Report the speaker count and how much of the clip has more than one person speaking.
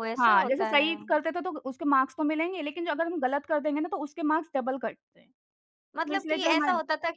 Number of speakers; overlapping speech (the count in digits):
2, about 22%